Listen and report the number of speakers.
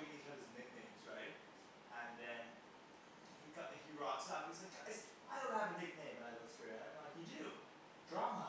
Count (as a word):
one